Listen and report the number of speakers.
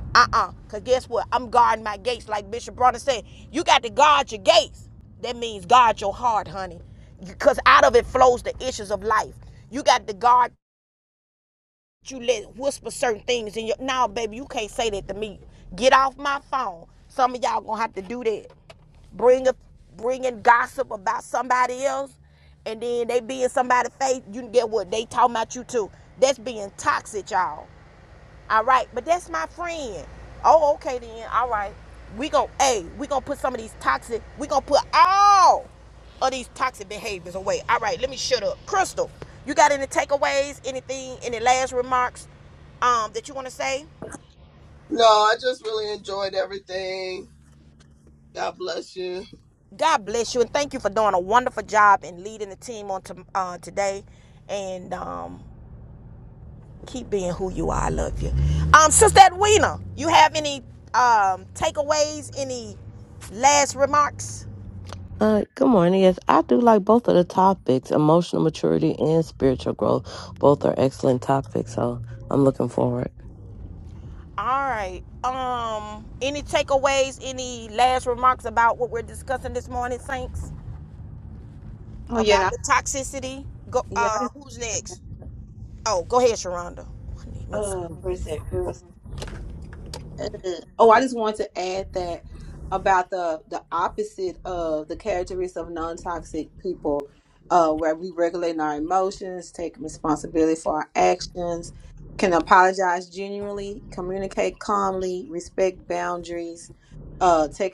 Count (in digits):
4